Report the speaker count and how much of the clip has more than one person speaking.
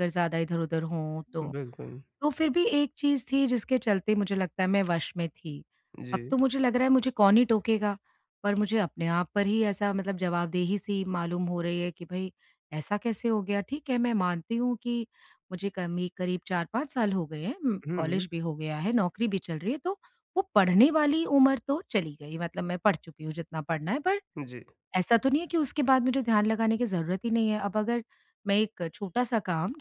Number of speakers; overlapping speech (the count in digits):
2, about 2%